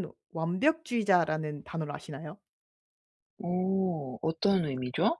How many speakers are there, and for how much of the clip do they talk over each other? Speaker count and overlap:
two, no overlap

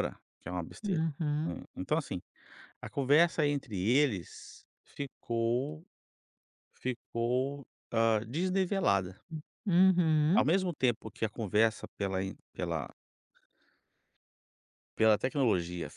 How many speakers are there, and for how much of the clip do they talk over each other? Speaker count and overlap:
two, about 2%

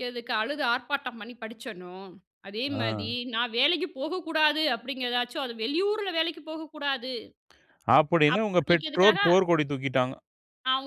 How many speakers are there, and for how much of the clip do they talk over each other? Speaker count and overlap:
two, about 12%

